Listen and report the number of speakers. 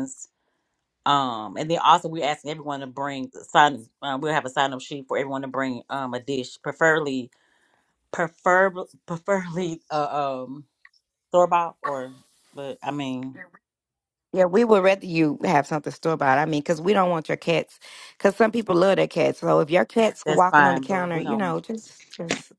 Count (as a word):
two